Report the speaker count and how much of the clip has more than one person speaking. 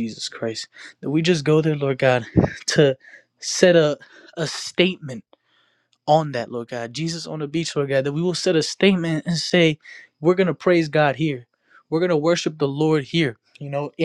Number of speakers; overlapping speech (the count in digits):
1, no overlap